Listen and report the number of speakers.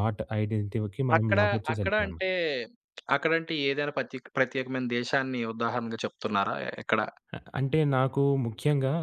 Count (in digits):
2